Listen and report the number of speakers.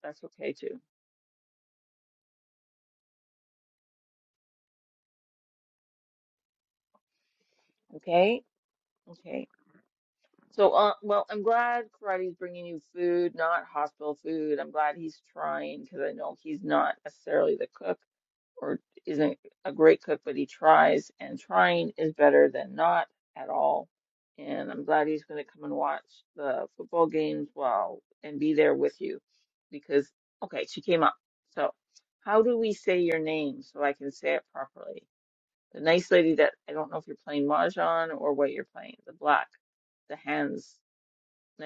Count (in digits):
1